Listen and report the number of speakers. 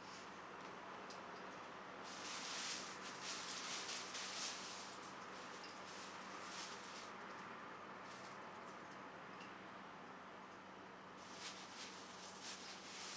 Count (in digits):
0